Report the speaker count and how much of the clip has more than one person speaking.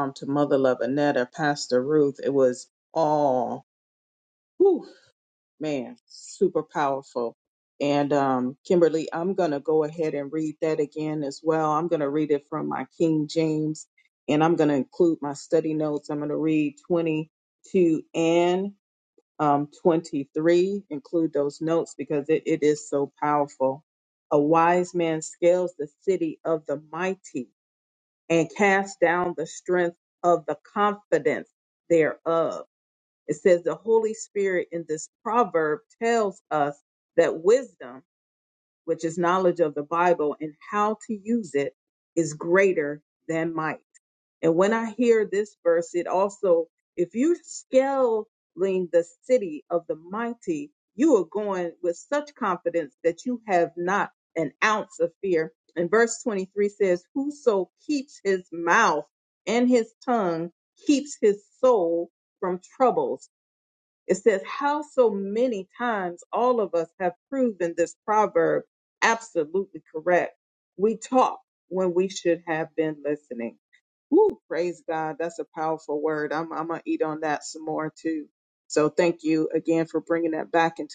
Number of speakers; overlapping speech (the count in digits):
1, no overlap